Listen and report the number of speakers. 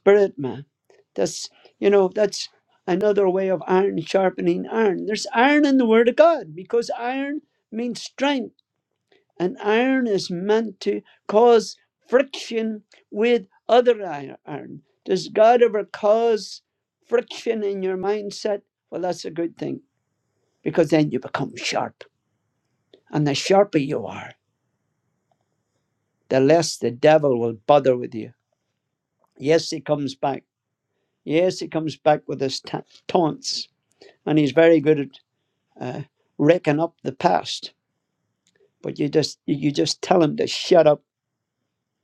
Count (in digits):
1